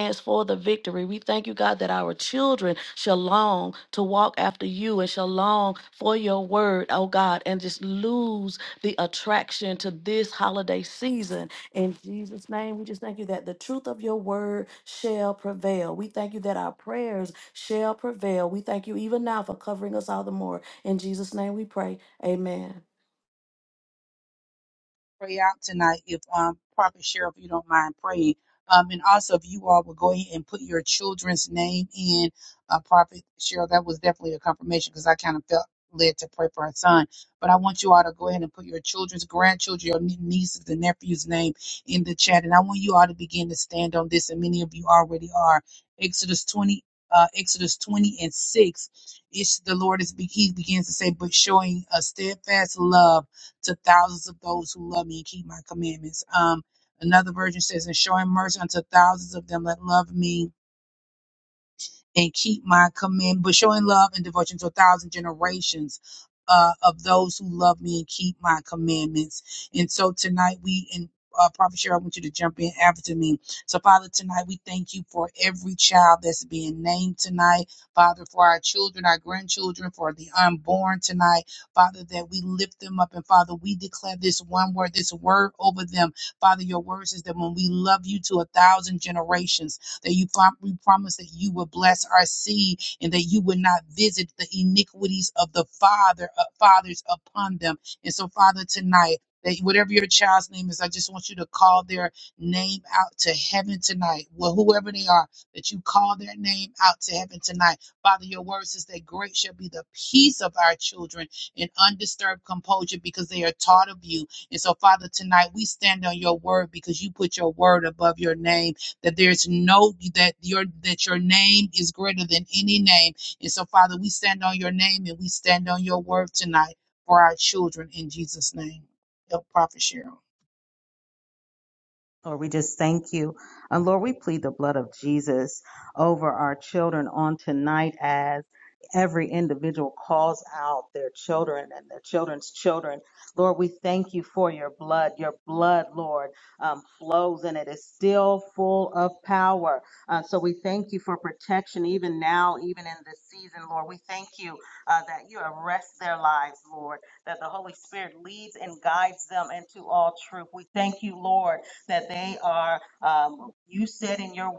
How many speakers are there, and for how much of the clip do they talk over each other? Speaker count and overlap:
3, no overlap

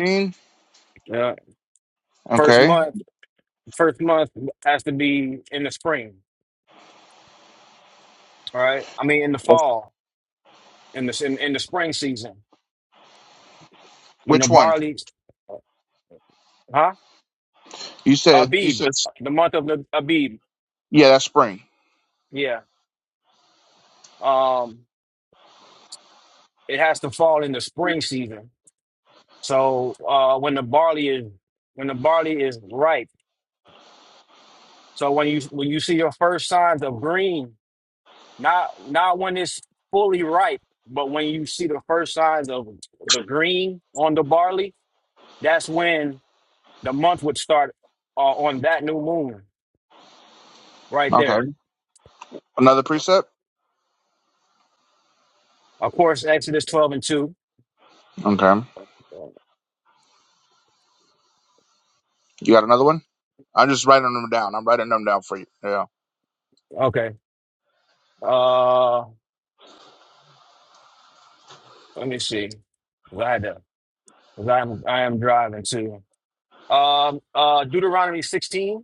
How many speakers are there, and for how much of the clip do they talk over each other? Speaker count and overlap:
2, about 2%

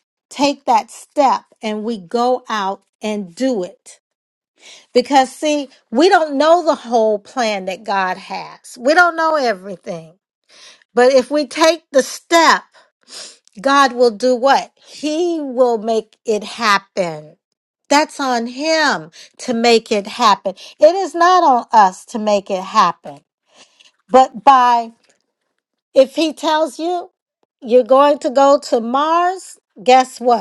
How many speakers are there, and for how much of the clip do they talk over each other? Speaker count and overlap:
1, no overlap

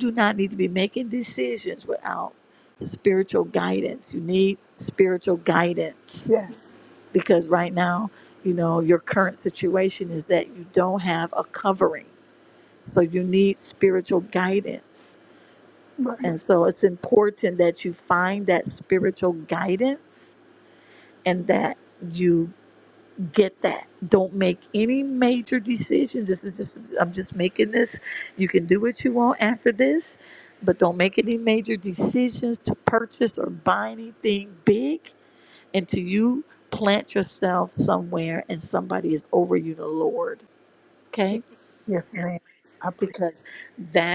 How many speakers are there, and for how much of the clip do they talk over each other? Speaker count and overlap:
2, about 1%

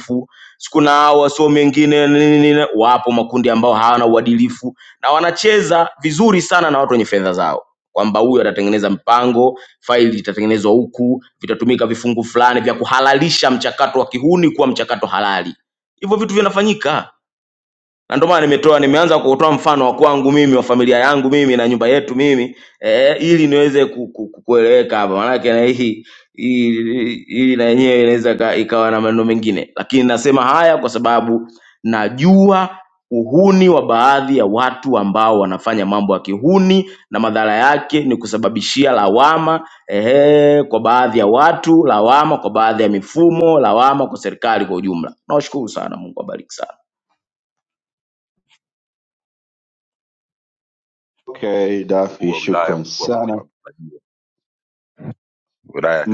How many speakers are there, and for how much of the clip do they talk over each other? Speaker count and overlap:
3, about 2%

